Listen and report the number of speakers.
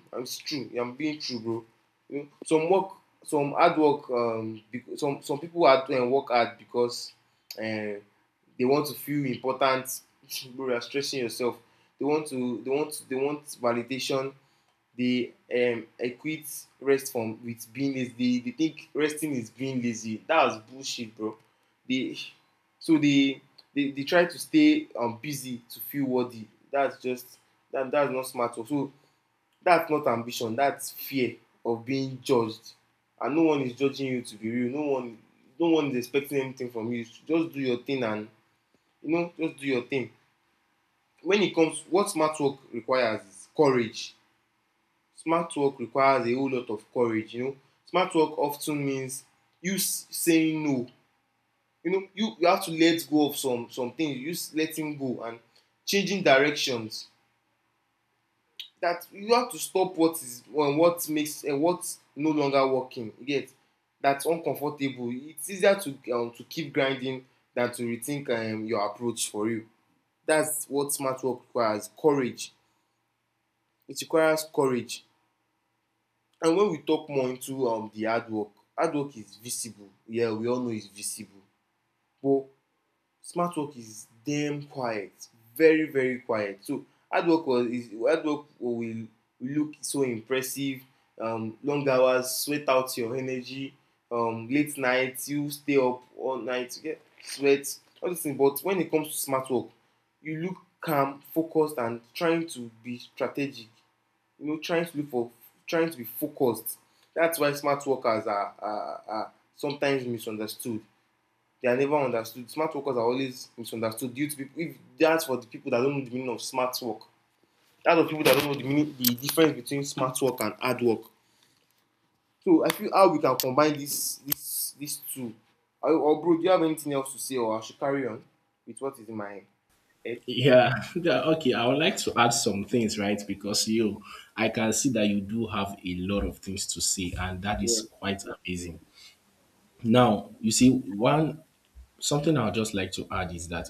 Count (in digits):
2